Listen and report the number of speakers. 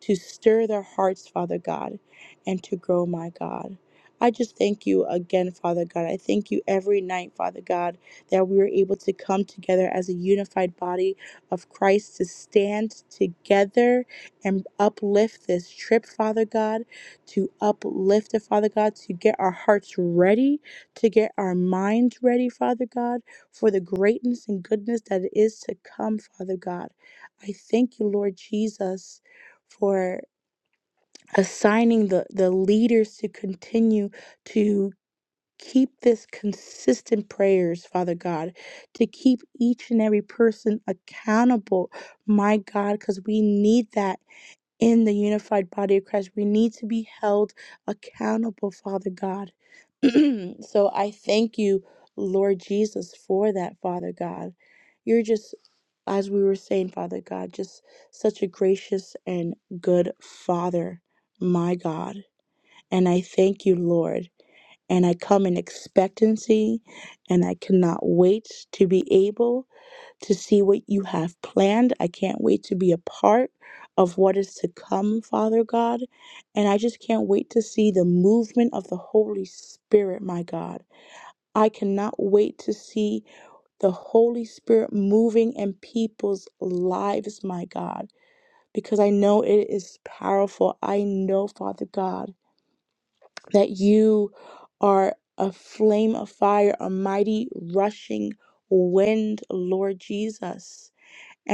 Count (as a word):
one